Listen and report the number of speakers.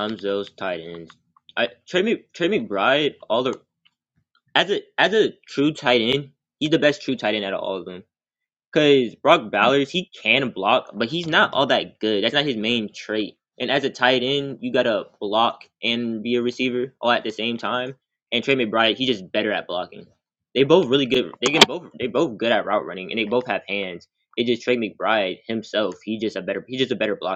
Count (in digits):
1